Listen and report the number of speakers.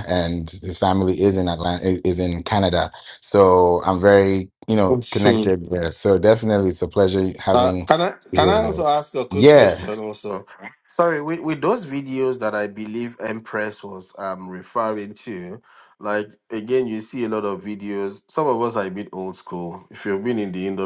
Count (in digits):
2